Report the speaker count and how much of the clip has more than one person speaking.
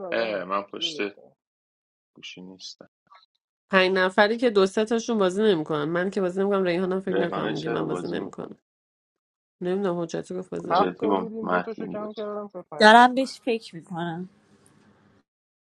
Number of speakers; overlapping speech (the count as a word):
four, about 24%